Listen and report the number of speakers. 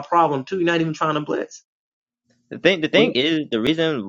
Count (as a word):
two